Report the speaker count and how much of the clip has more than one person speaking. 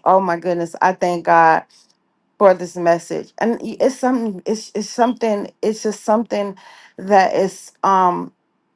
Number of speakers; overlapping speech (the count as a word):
one, no overlap